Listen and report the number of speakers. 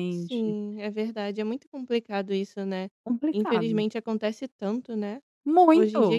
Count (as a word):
two